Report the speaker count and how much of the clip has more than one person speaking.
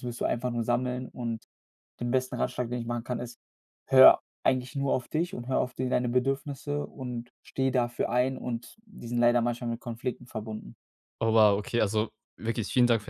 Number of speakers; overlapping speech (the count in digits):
2, no overlap